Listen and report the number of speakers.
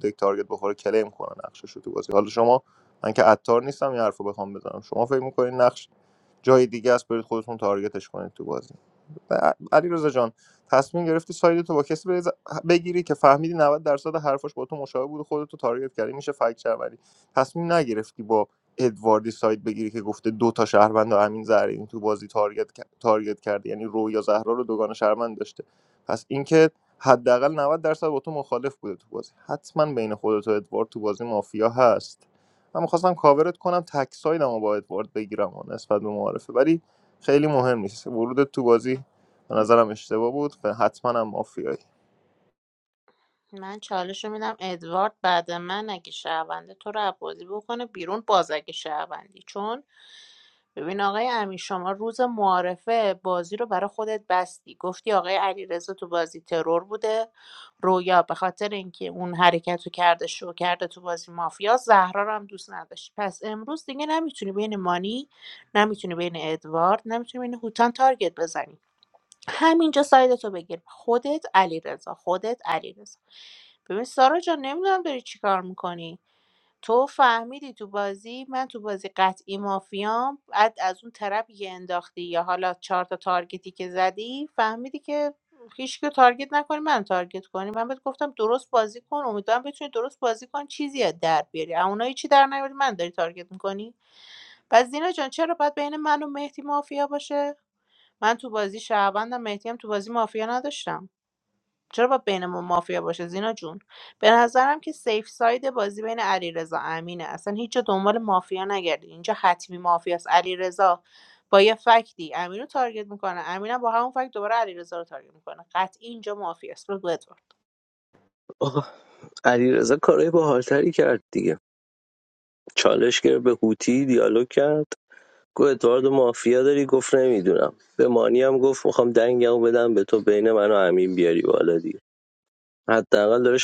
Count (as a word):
three